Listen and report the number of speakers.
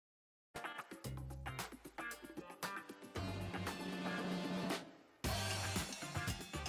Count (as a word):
zero